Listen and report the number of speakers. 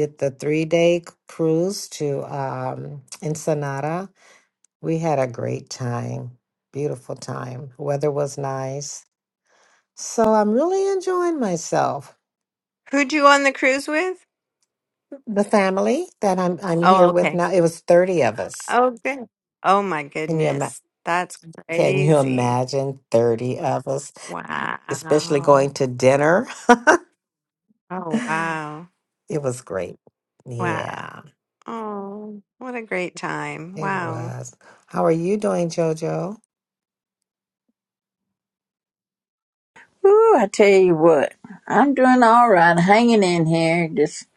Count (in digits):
3